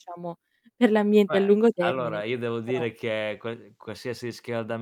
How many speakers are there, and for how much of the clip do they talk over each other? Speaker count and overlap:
two, about 24%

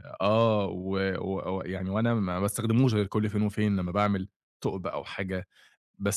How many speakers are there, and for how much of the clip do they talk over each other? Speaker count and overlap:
one, no overlap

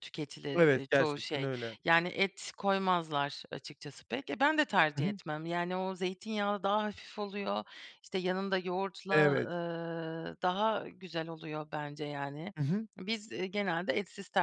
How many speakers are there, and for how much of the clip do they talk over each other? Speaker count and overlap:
two, about 10%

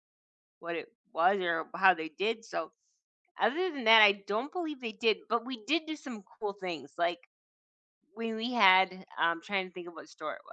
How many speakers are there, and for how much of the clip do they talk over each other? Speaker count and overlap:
one, no overlap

